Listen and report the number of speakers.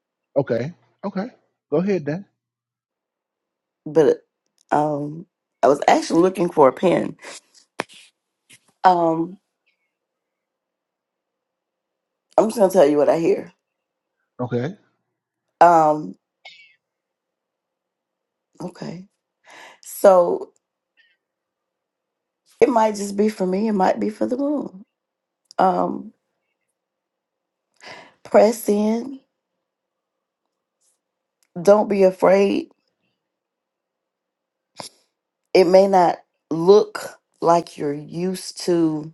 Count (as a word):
two